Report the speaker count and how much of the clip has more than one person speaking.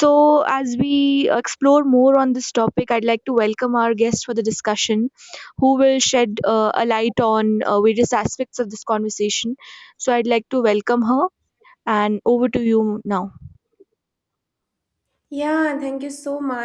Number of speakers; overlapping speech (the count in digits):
2, no overlap